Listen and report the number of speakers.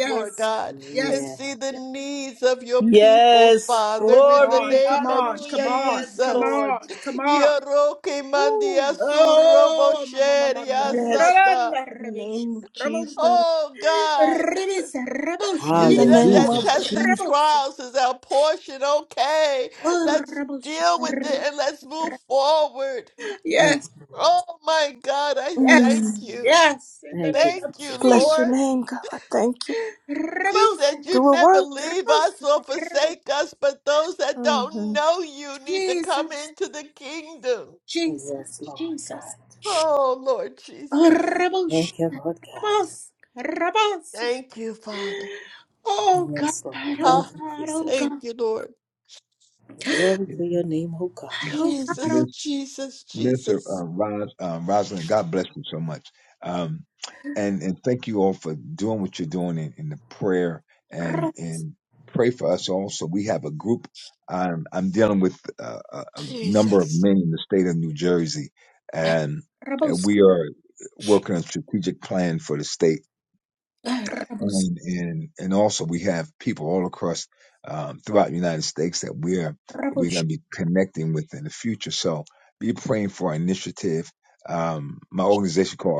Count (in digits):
5